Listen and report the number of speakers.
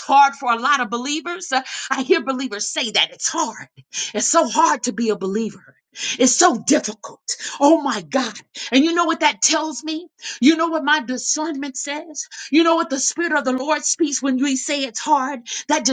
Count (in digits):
1